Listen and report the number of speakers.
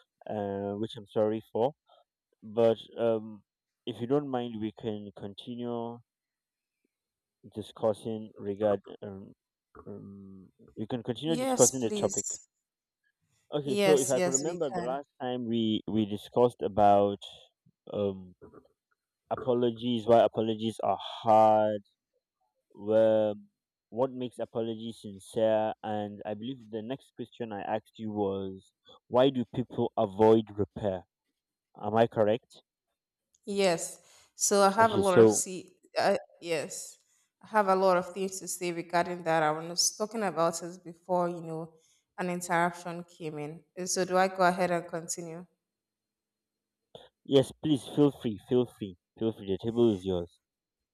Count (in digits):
2